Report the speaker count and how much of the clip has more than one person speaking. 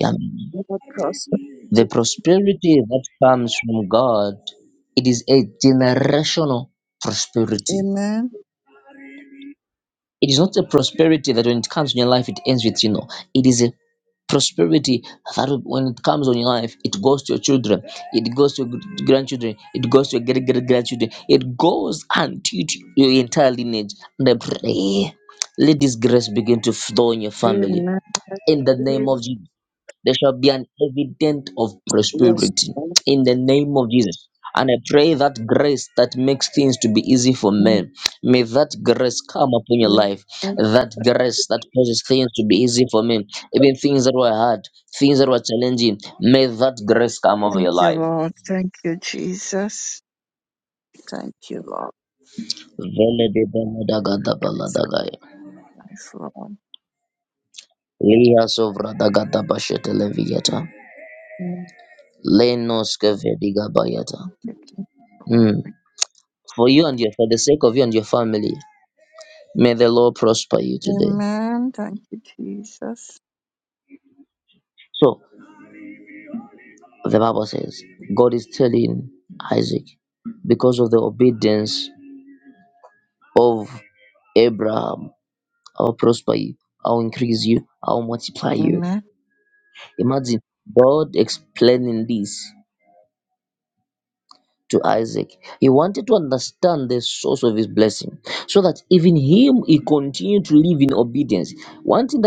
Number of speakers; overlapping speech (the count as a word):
two, about 3%